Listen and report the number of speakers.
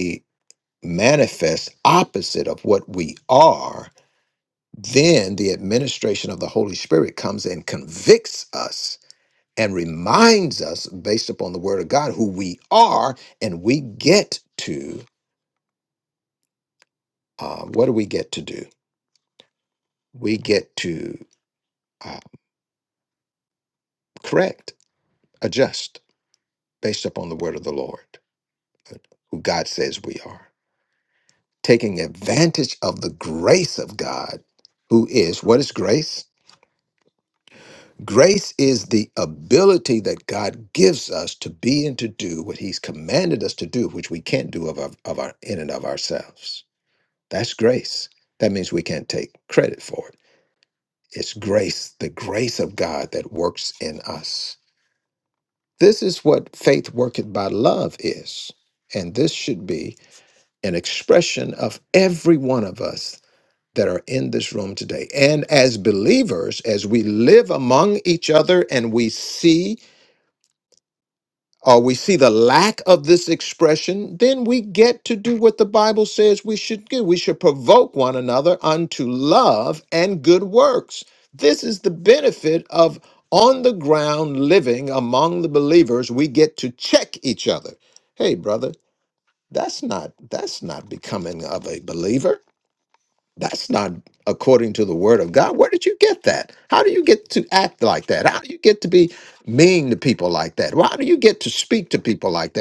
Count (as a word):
one